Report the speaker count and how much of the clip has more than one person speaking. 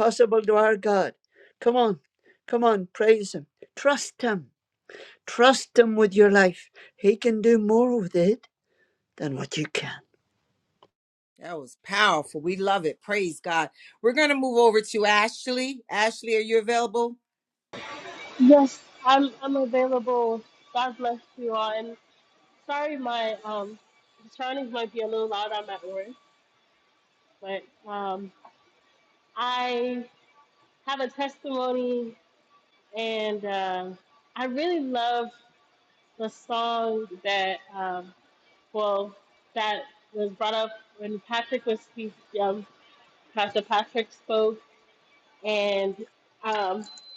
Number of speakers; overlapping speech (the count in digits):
3, no overlap